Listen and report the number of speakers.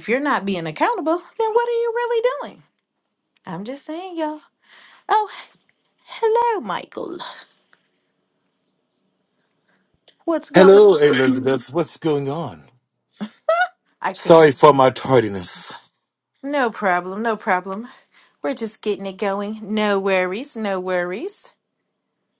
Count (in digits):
2